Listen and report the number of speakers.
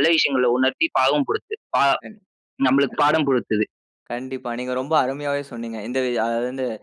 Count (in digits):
2